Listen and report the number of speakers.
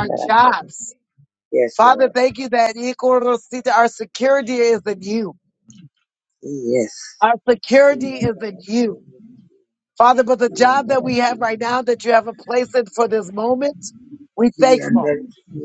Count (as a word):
two